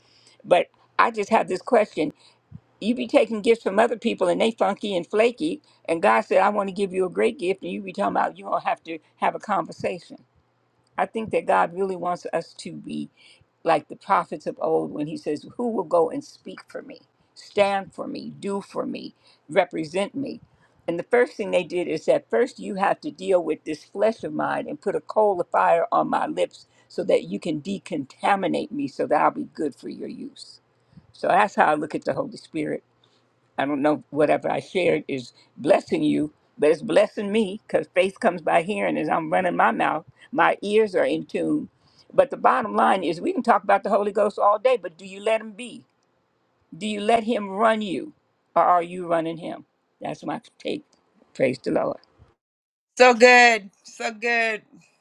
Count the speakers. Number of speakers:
2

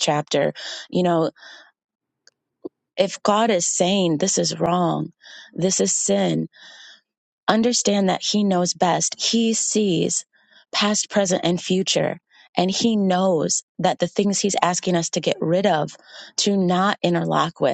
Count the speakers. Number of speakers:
1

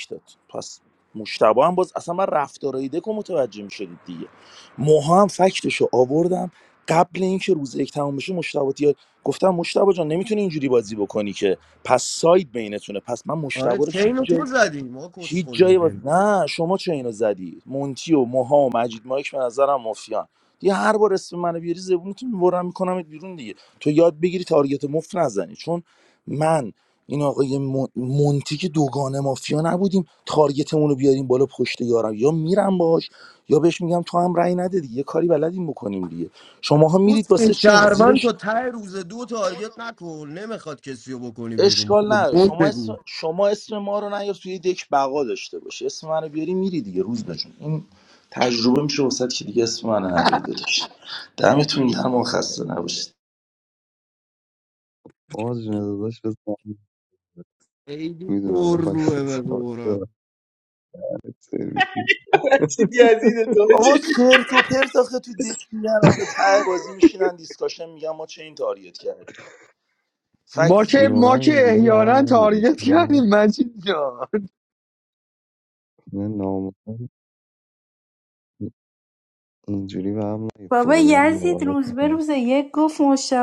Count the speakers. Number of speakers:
6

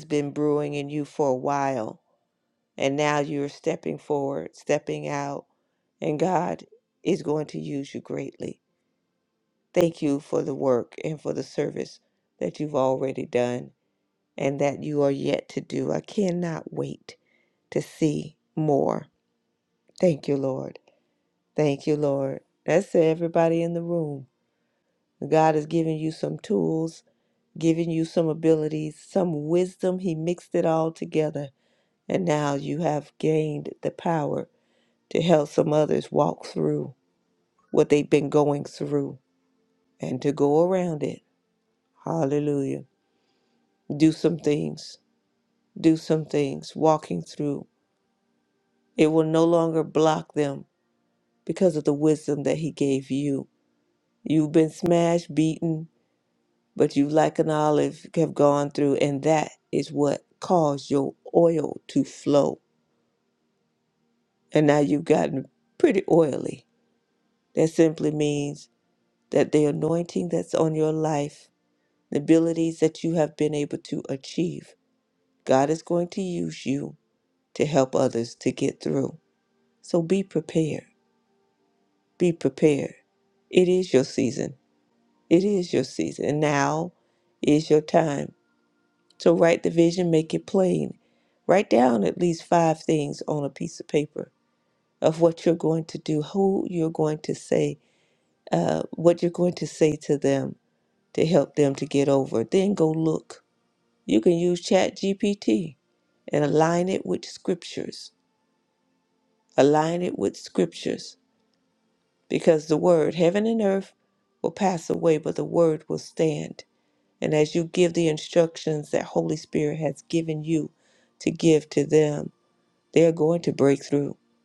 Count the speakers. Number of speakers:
1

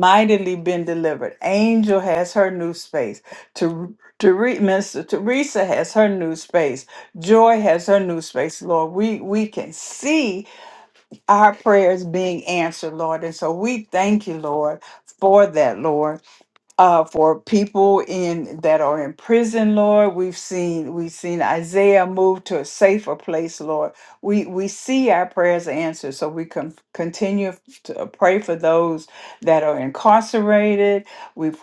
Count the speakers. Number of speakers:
1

